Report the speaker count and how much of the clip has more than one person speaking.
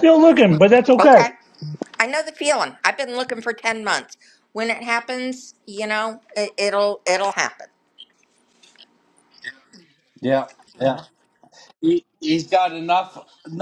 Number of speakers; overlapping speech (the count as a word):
three, about 2%